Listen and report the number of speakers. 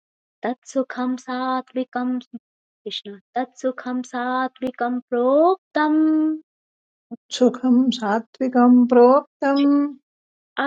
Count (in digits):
2